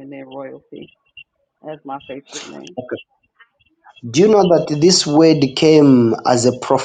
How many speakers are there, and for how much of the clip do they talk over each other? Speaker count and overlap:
2, no overlap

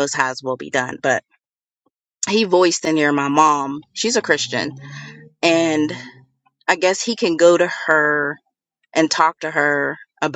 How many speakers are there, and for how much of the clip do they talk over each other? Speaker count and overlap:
1, no overlap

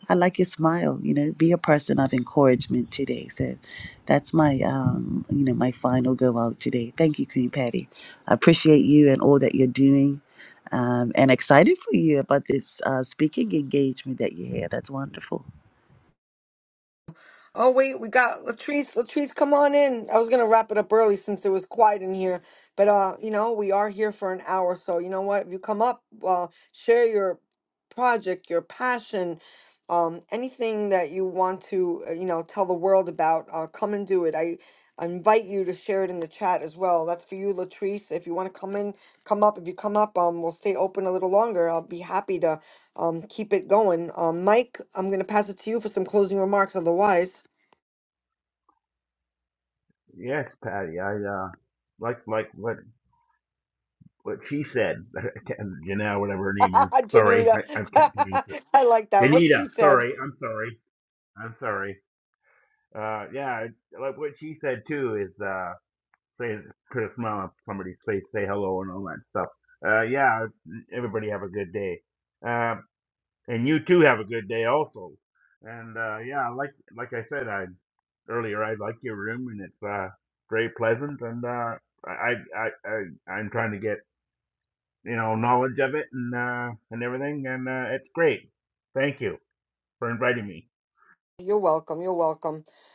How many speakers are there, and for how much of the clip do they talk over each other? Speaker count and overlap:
3, about 2%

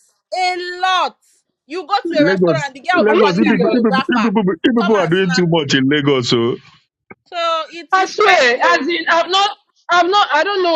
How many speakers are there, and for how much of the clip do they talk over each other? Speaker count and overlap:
3, about 37%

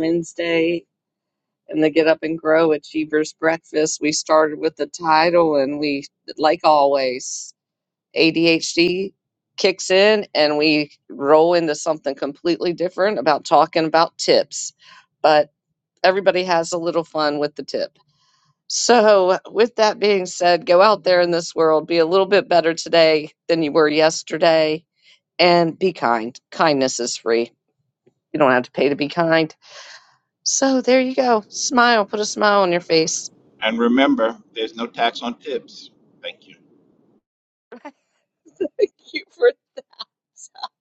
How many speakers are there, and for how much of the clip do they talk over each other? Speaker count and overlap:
2, no overlap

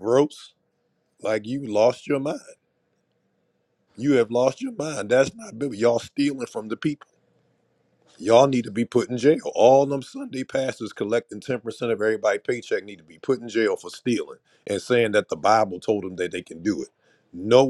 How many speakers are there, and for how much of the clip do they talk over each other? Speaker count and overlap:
1, no overlap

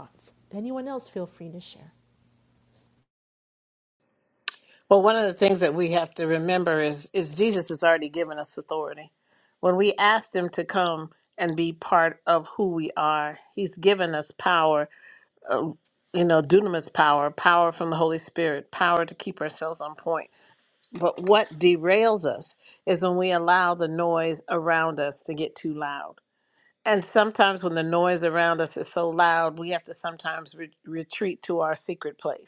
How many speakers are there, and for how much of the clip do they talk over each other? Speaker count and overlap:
2, no overlap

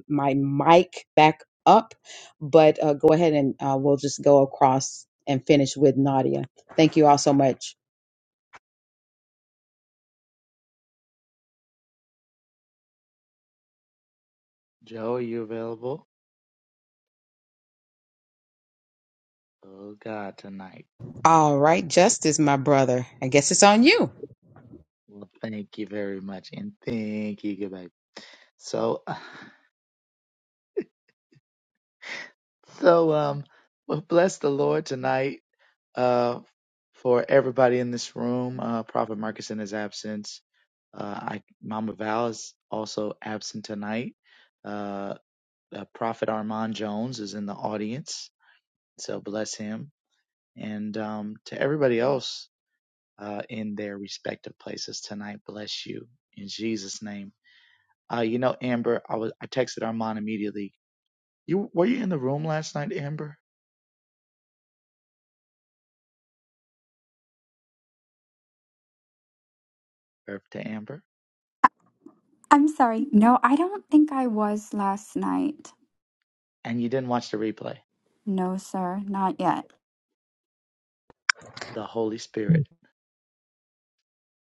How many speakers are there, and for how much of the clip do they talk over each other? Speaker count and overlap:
3, no overlap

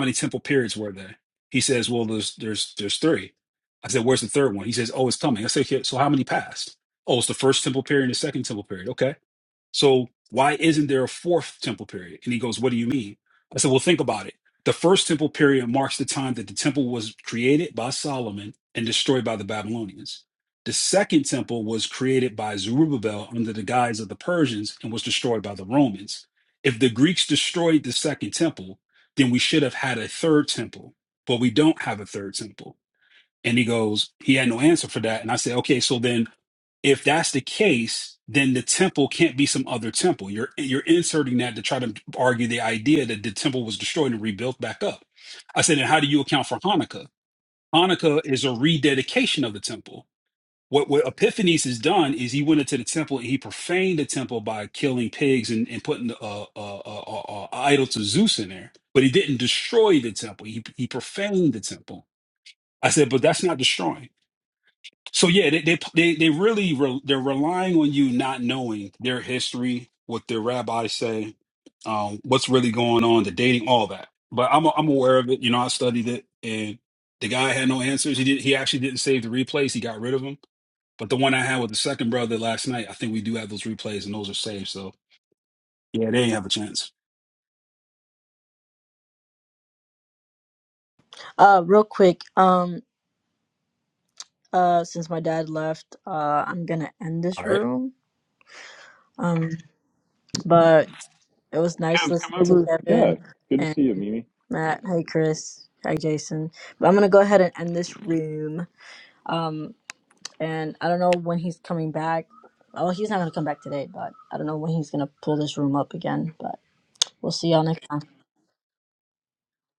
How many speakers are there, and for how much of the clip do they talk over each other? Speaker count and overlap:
3, about 1%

